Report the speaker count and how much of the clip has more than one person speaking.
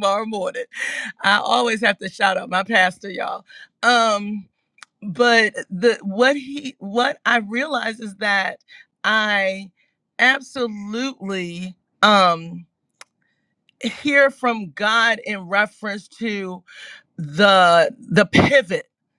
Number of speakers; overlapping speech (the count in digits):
1, no overlap